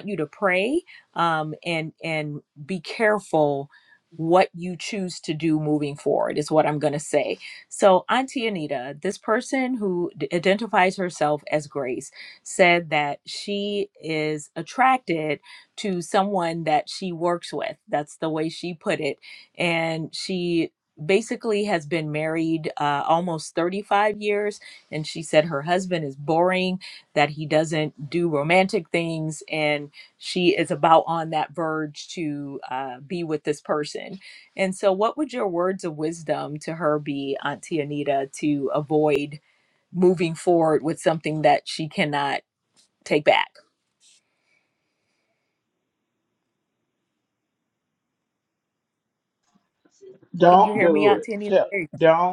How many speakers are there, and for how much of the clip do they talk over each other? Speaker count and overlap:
2, about 2%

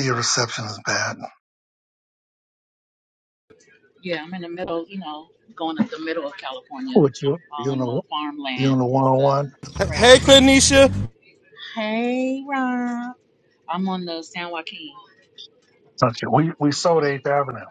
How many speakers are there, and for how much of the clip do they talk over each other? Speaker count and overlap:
3, about 9%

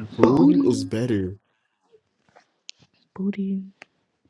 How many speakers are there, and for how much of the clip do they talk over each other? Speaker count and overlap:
2, about 18%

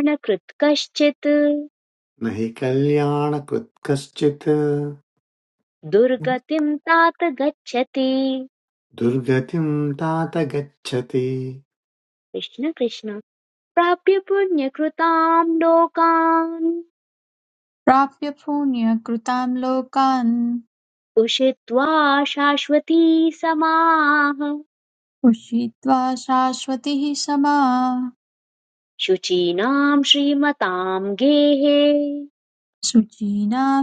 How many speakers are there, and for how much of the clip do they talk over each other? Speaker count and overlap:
3, no overlap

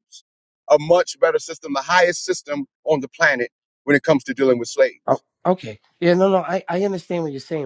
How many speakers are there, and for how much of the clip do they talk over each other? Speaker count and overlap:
2, no overlap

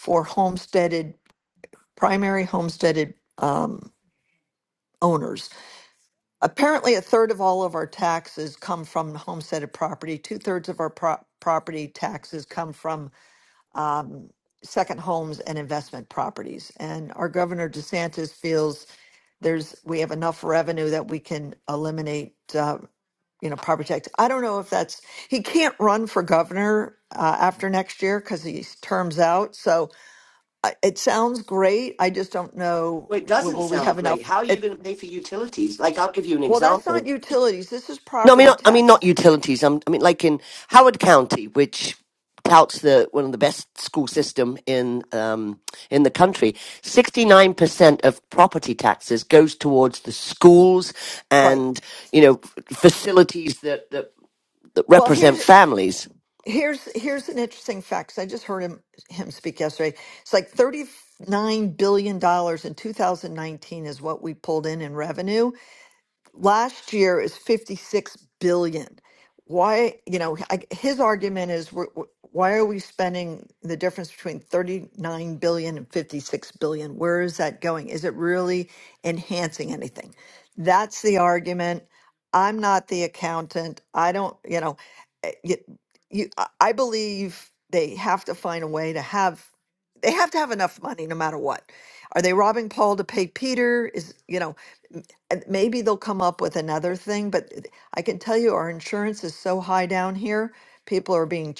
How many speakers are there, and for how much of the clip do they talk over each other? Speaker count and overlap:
2, about 3%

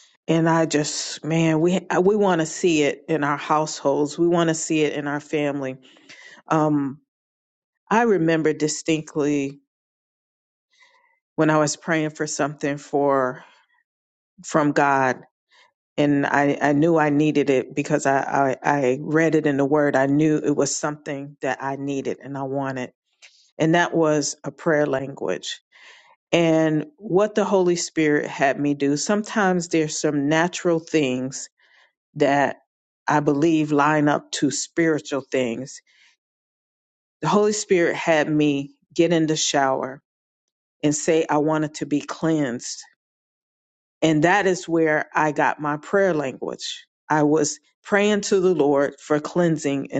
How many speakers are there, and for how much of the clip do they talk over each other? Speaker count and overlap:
1, no overlap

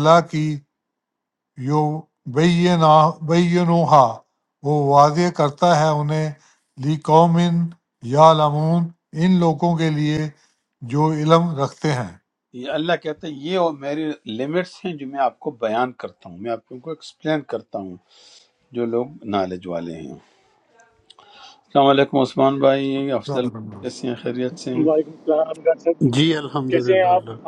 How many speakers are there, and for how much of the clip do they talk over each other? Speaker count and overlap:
4, about 3%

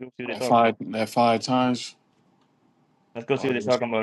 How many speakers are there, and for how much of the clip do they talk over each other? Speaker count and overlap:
2, about 21%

